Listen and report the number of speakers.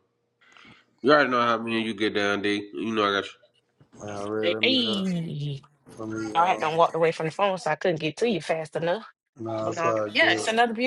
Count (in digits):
3